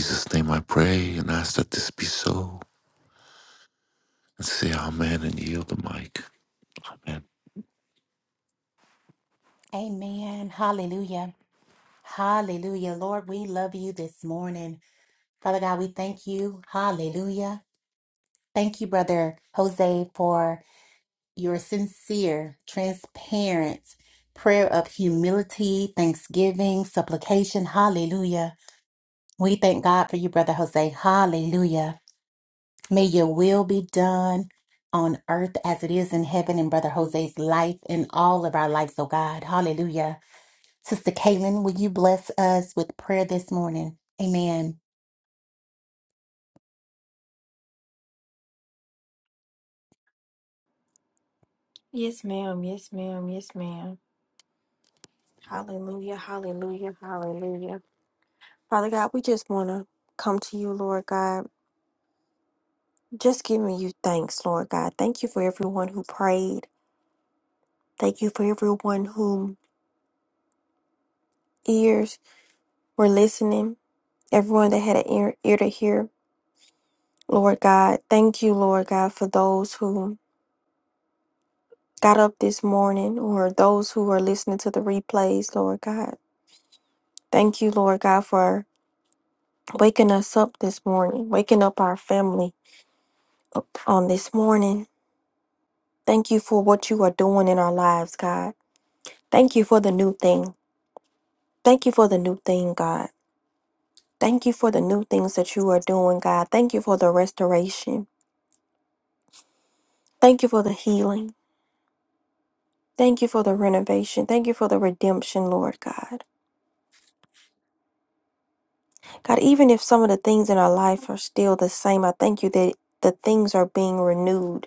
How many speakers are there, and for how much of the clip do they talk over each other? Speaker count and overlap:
three, no overlap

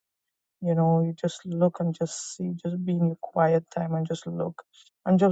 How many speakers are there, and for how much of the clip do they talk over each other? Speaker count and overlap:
one, no overlap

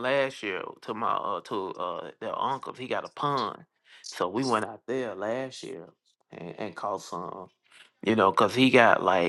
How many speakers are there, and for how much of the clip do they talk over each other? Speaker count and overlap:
one, no overlap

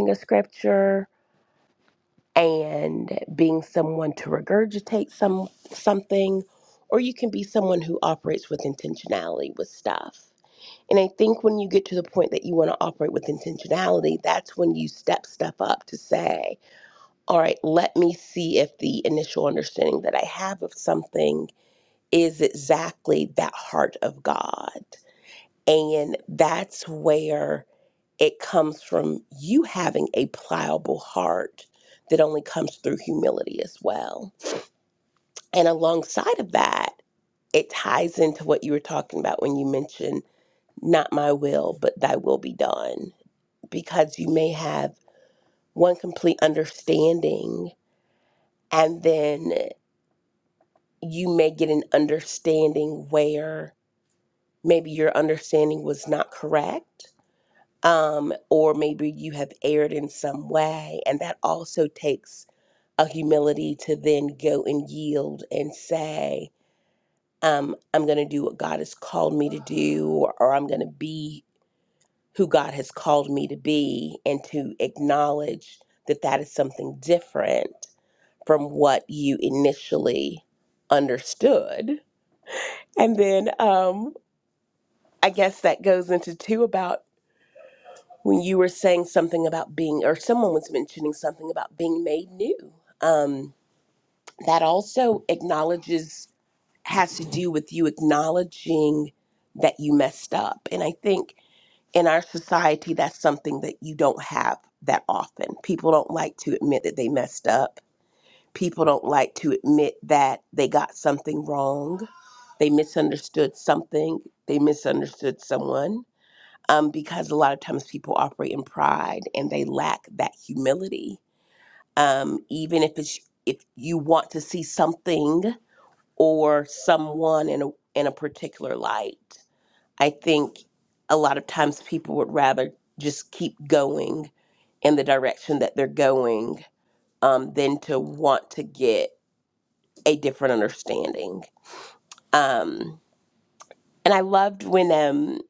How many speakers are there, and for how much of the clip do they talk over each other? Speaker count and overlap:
one, no overlap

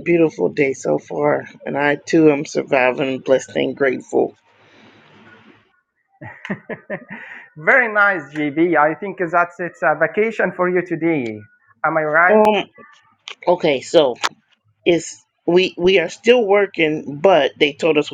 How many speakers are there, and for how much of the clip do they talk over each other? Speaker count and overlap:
two, about 1%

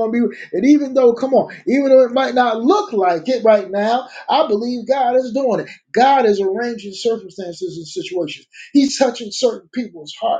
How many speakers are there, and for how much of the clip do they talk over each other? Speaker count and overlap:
one, no overlap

